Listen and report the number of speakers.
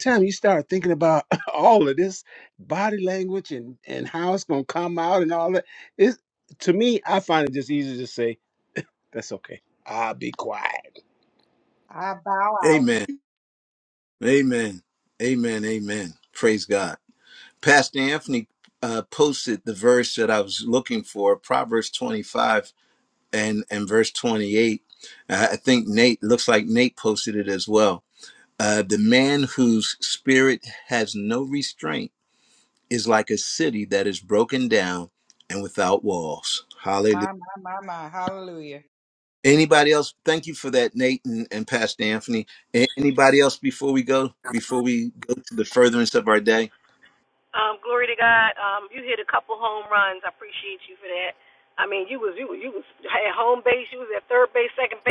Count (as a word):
four